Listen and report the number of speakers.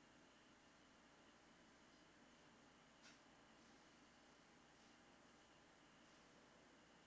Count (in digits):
0